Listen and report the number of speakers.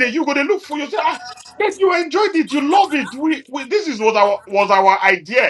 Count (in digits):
1